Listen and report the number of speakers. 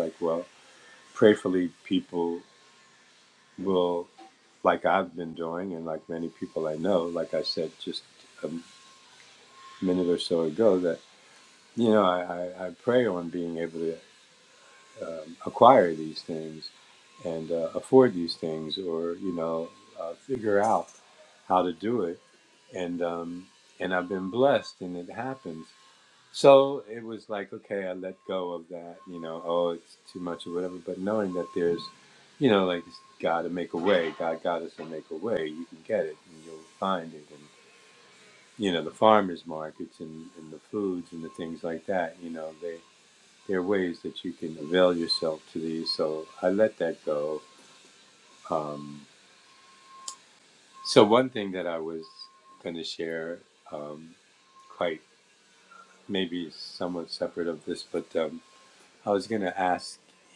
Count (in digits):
1